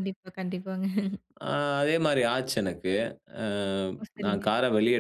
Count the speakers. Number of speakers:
two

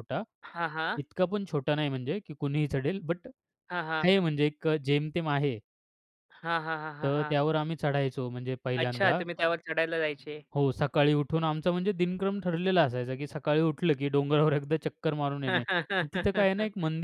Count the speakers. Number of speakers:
two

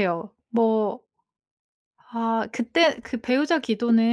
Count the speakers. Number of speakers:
one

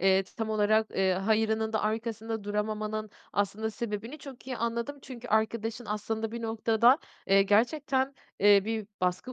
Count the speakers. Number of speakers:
one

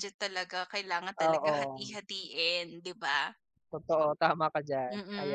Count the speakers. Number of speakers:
two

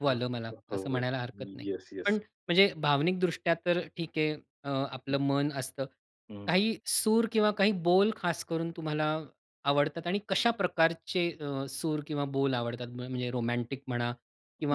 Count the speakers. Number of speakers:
two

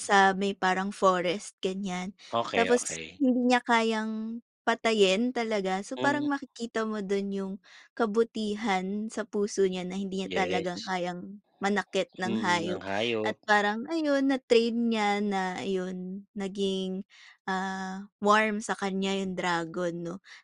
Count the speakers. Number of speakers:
two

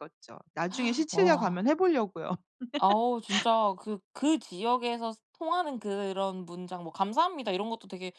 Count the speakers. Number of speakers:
two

